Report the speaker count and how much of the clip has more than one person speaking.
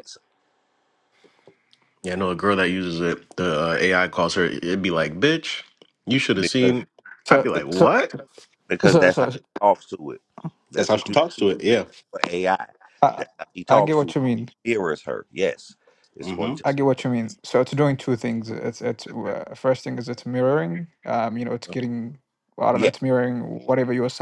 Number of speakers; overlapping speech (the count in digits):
3, about 13%